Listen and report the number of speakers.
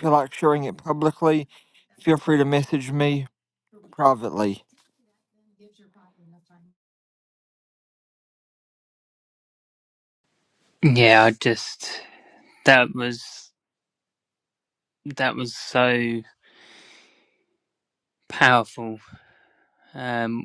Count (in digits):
2